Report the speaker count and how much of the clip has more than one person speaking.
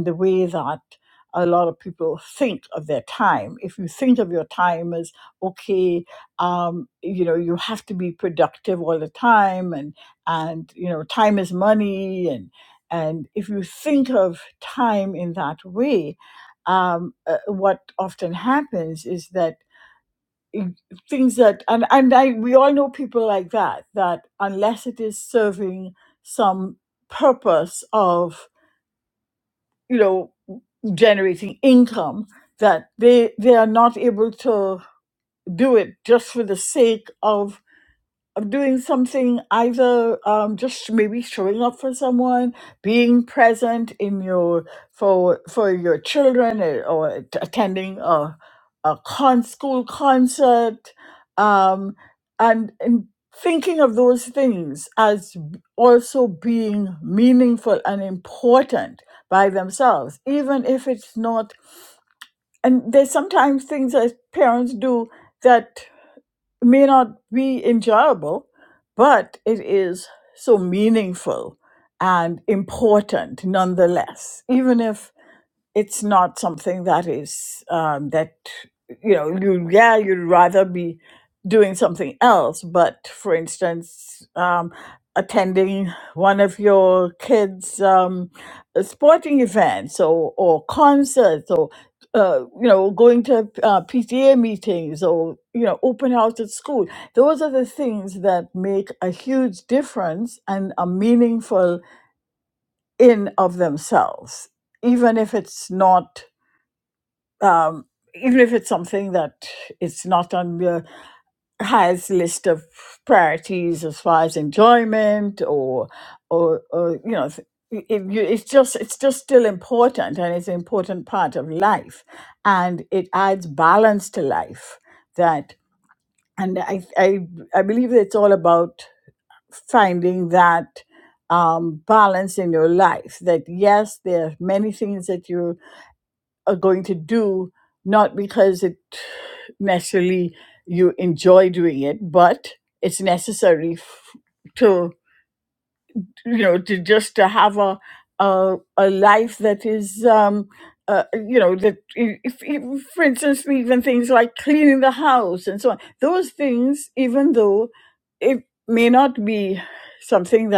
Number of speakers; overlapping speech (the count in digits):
1, no overlap